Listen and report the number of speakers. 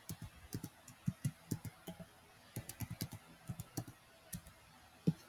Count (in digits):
0